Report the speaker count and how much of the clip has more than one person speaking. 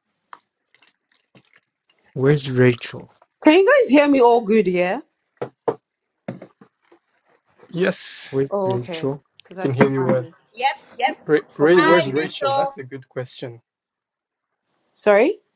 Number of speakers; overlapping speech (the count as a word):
four, about 15%